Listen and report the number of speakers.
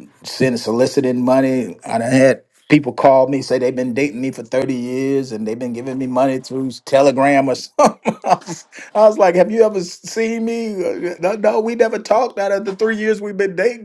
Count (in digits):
1